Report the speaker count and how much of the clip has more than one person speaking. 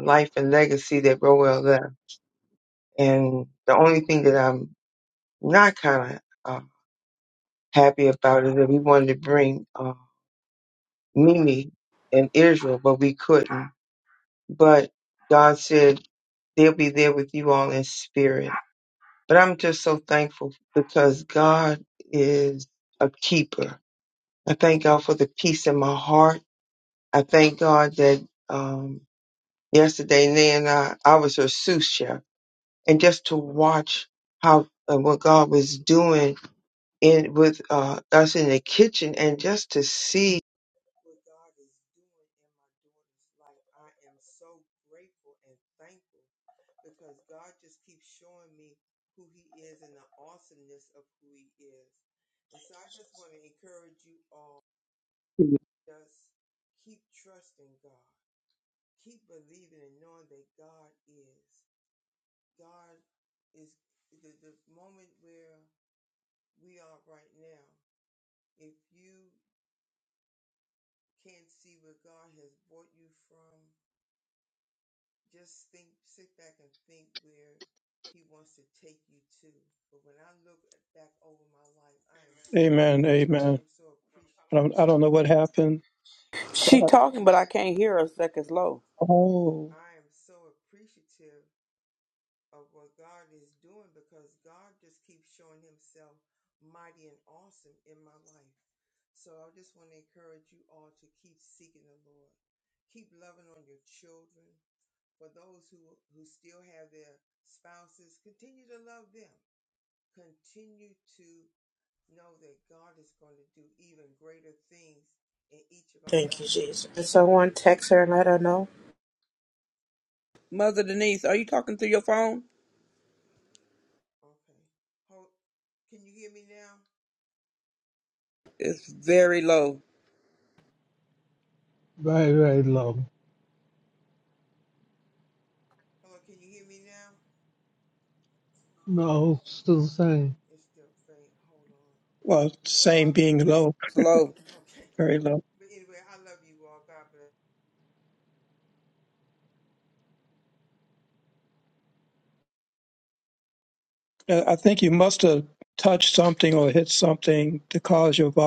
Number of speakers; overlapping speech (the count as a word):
five, under 1%